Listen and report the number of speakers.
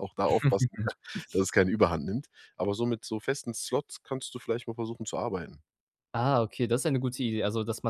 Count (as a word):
two